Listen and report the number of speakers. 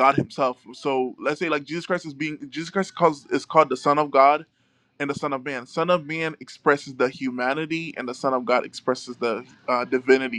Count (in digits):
1